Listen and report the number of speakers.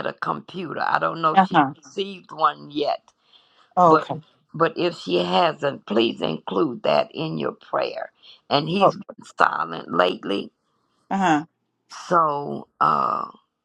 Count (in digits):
2